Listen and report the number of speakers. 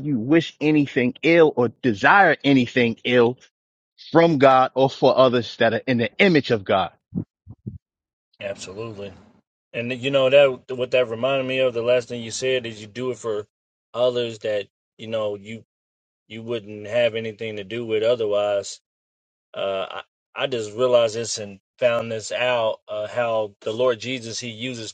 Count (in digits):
2